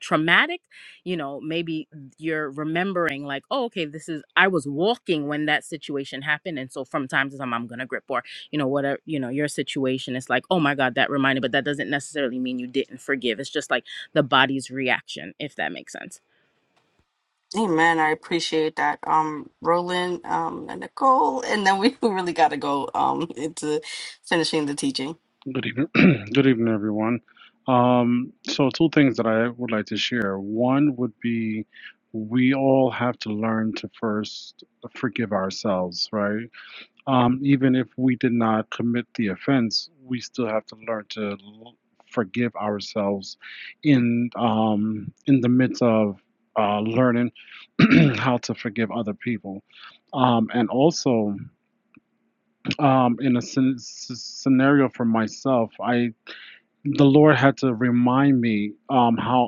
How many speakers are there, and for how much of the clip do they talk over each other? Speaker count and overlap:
3, no overlap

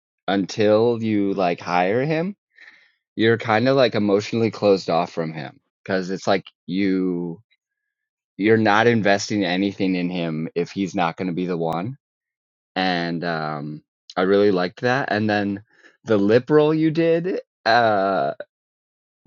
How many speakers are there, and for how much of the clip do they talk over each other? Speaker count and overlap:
1, no overlap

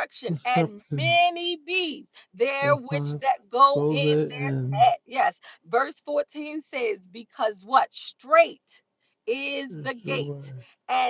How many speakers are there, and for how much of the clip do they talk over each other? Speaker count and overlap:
2, about 21%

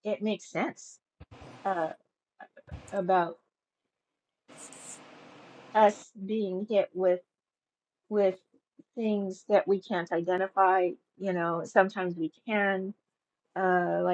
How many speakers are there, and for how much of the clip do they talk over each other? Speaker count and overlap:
1, no overlap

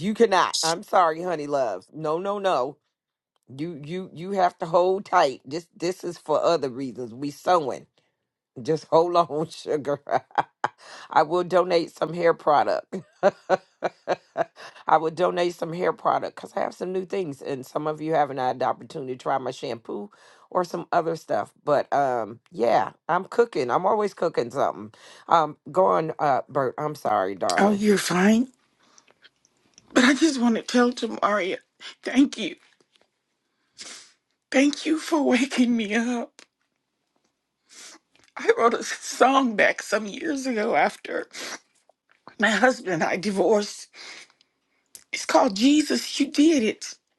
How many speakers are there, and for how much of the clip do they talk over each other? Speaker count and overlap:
2, under 1%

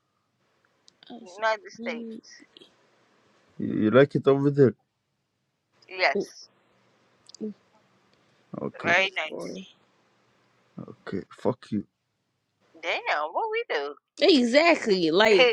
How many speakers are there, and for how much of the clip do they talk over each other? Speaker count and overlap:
3, about 2%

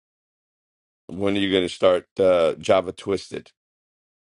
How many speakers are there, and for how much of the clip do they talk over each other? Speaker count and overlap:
1, no overlap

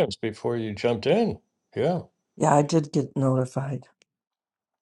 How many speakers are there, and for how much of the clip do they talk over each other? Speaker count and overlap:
2, no overlap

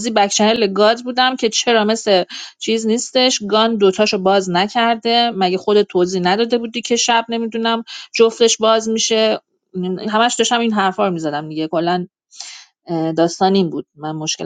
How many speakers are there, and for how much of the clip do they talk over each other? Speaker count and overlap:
1, no overlap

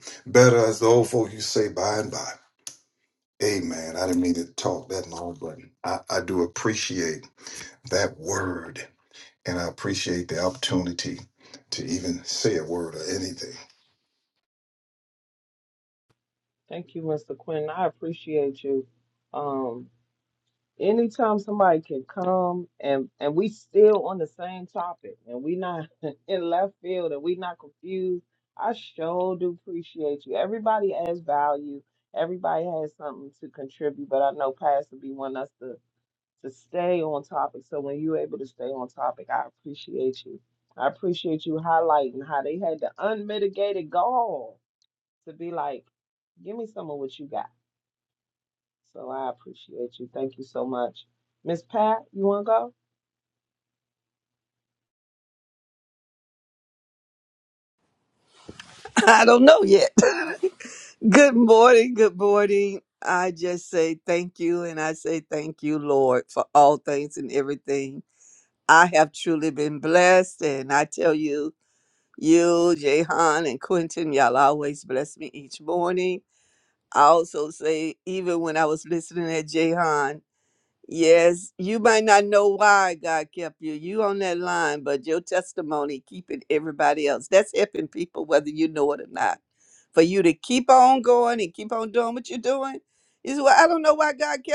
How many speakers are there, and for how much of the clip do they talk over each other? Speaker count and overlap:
3, no overlap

